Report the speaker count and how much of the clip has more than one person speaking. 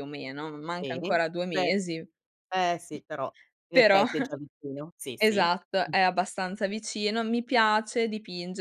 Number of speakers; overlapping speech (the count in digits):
2, about 14%